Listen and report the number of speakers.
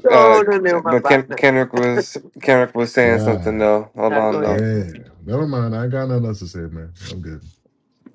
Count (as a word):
three